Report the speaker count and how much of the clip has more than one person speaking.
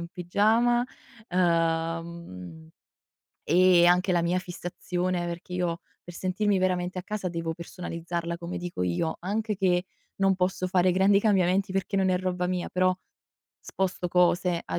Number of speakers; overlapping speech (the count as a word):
one, no overlap